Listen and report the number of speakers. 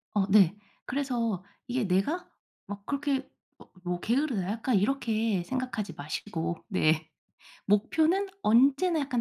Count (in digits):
1